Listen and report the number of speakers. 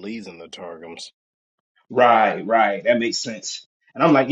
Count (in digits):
2